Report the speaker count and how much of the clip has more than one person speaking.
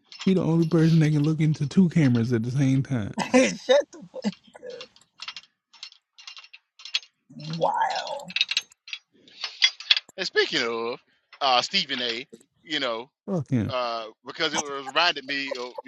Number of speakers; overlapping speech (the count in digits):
3, under 1%